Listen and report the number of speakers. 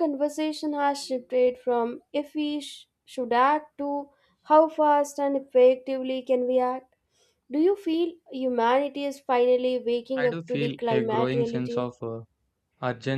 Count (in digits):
2